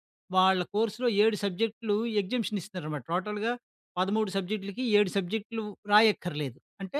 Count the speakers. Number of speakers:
one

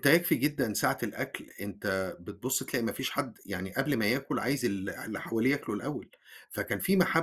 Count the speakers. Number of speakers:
one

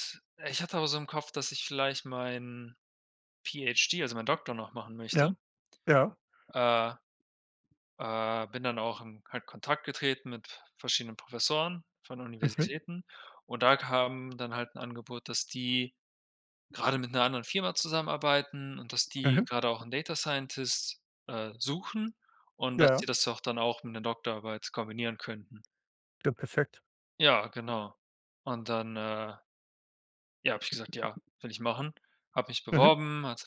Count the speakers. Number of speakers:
two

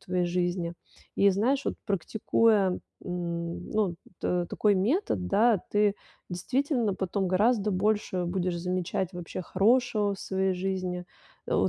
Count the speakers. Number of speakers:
one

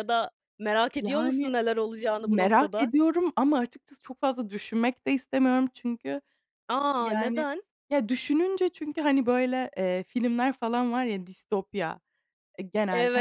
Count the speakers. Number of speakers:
two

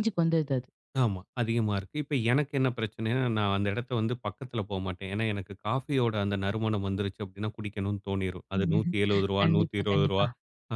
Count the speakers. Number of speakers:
two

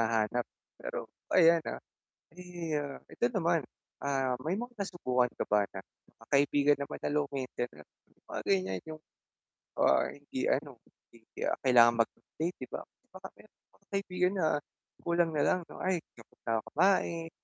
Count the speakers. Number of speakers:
one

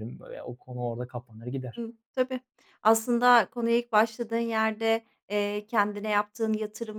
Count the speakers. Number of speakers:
two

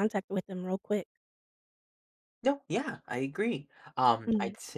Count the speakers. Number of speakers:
two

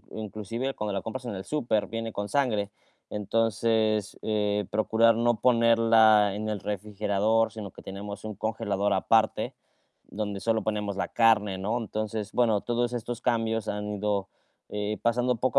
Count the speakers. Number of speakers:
one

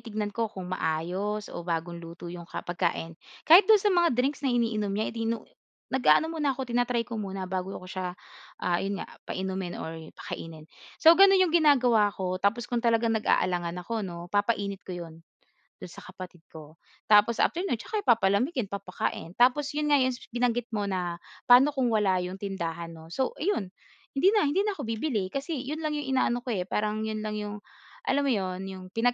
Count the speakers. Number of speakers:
one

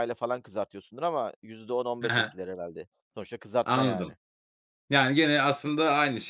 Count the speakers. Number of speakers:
two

